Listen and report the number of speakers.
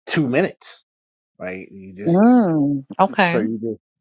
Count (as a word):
two